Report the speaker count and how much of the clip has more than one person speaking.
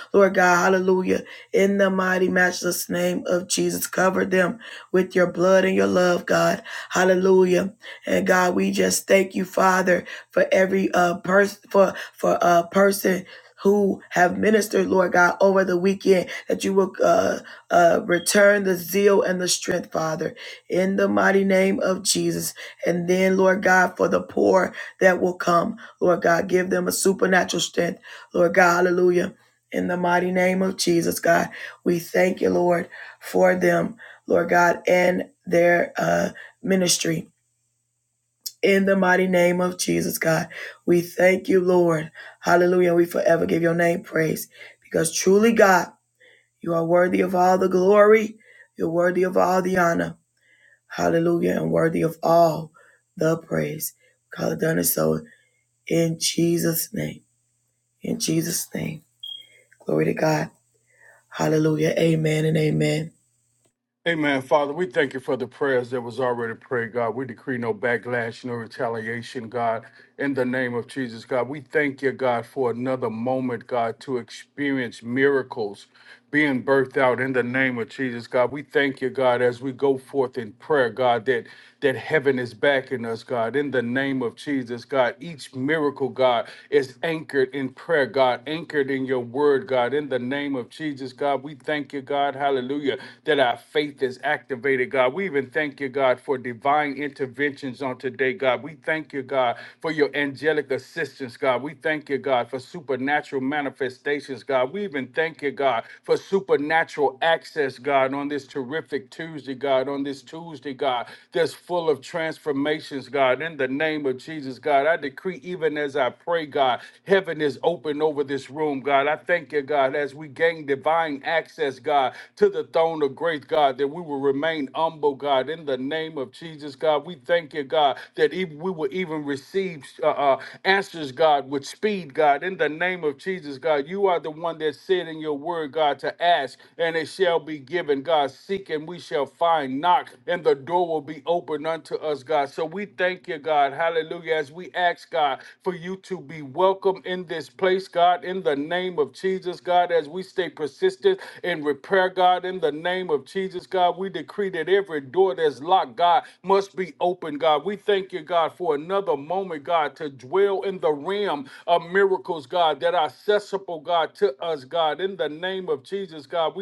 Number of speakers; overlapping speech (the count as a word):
two, no overlap